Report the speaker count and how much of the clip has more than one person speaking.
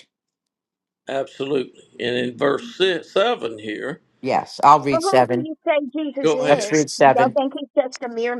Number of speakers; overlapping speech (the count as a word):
three, about 15%